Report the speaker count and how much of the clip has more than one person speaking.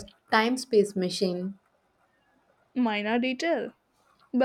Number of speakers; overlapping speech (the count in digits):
2, no overlap